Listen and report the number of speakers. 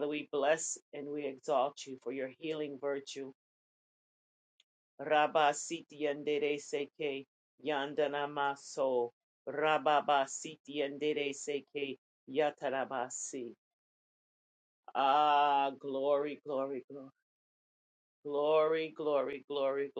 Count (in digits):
1